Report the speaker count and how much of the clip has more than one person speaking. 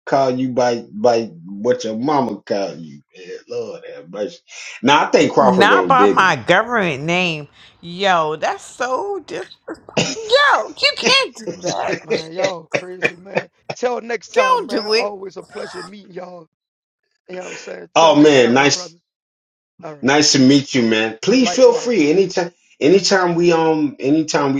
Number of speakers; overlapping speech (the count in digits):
3, about 13%